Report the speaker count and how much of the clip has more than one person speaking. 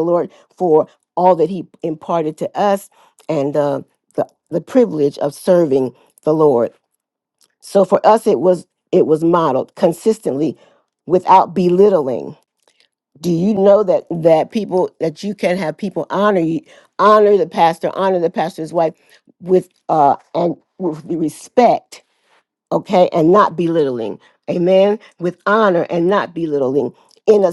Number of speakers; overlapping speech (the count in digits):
1, no overlap